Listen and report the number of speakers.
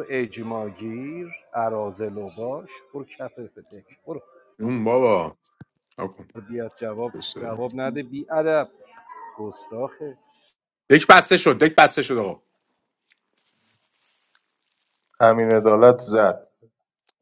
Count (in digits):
3